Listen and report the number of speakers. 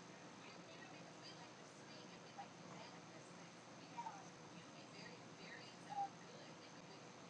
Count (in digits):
0